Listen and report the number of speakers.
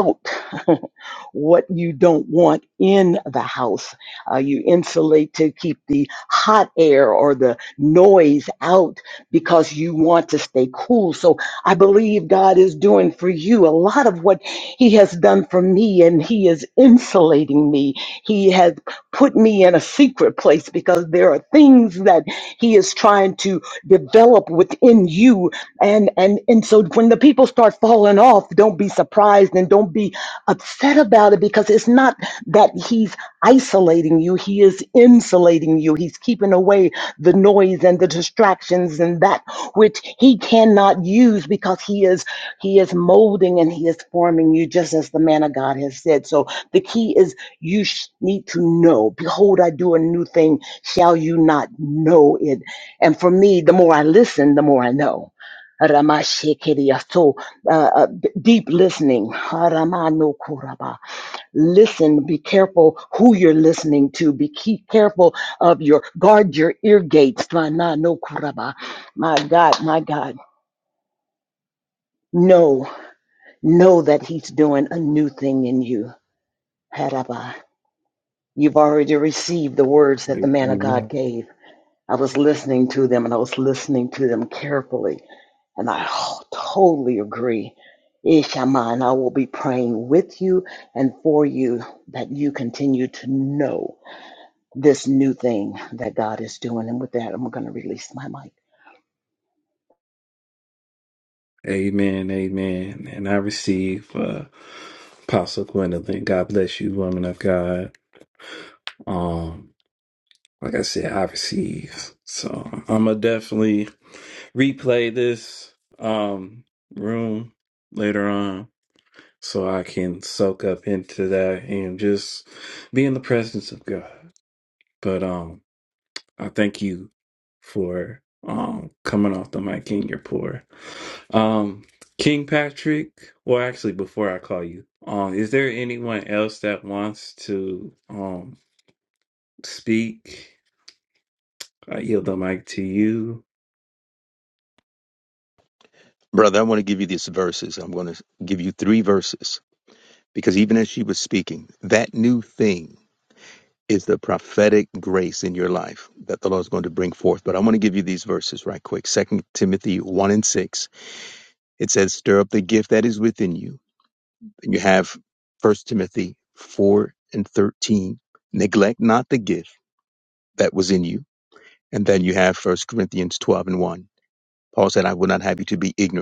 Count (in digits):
3